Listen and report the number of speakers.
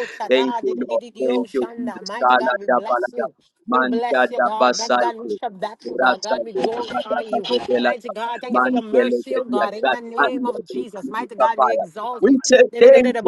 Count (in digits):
2